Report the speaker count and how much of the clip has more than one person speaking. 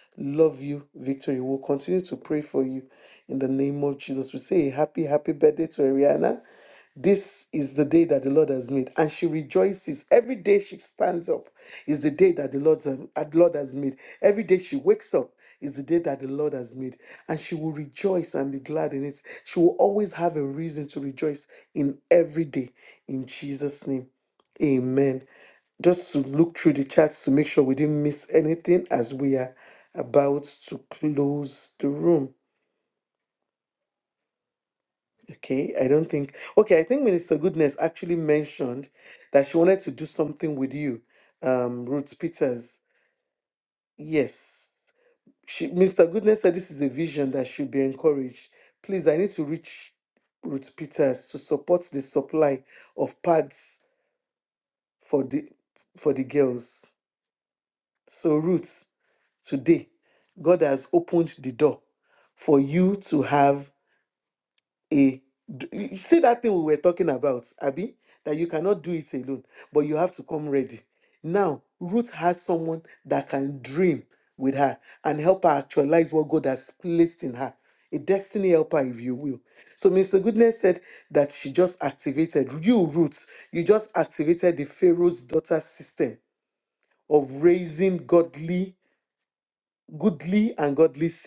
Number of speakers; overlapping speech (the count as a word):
one, no overlap